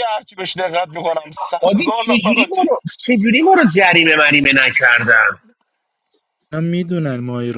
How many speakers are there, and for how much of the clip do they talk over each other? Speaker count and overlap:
3, about 14%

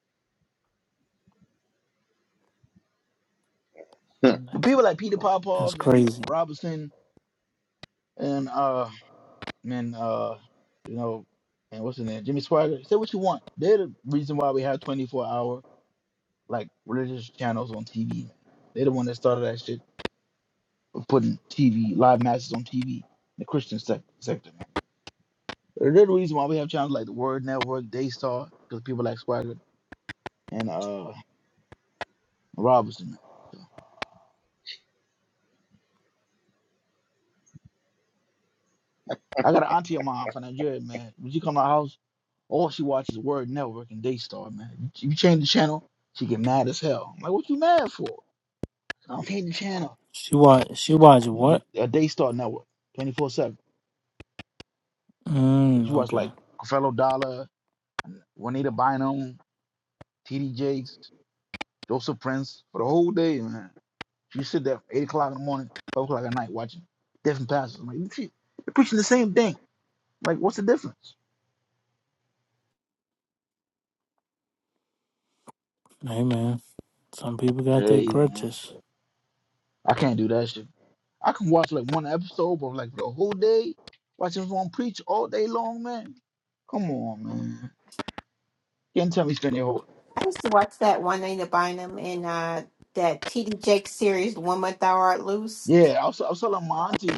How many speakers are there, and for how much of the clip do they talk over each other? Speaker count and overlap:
3, about 2%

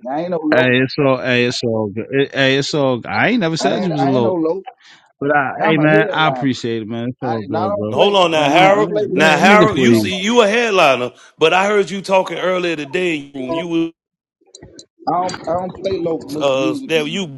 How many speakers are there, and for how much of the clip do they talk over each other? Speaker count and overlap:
3, about 34%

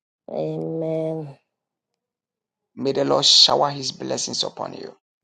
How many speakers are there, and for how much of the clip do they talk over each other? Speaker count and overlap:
2, no overlap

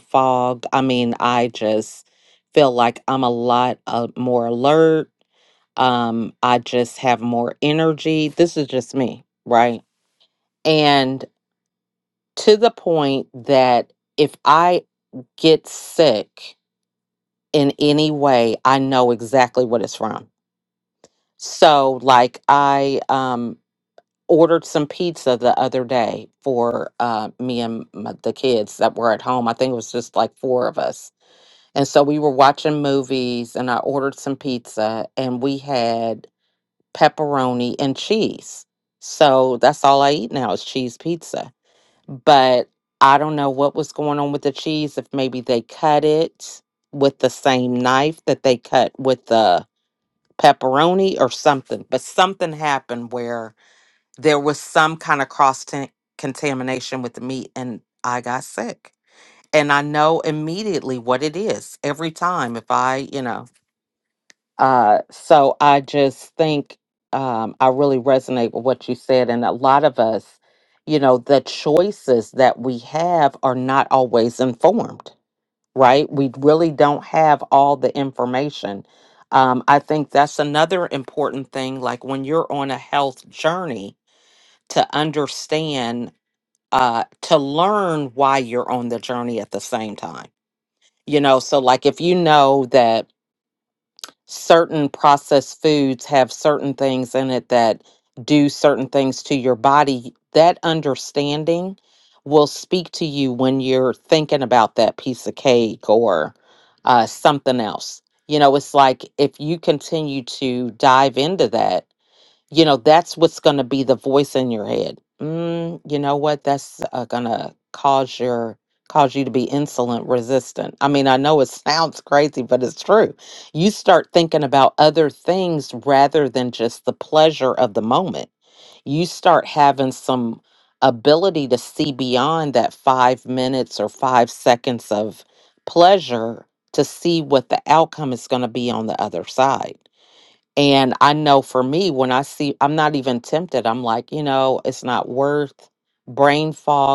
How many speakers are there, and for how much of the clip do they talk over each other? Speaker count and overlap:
1, no overlap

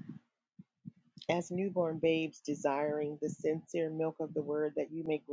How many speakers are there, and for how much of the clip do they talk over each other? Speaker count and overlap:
1, no overlap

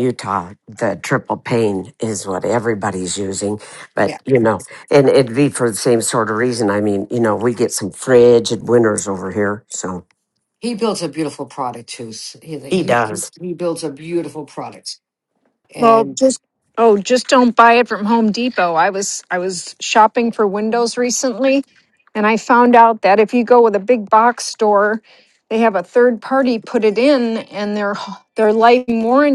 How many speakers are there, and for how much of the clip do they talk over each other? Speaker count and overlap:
3, about 3%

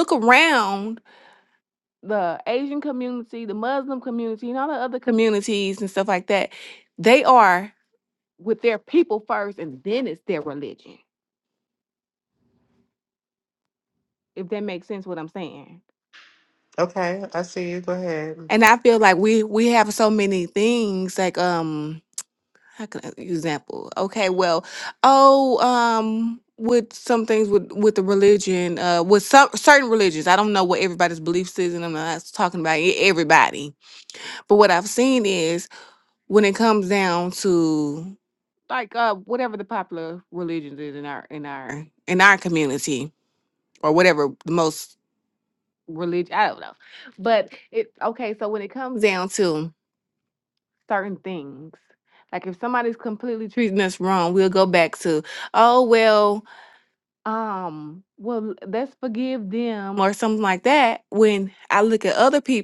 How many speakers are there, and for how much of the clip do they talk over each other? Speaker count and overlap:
2, no overlap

